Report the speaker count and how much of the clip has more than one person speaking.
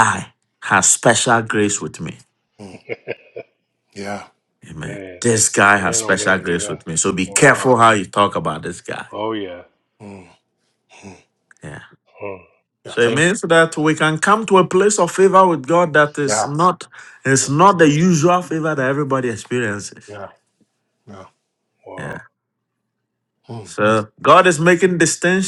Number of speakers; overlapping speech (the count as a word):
three, about 11%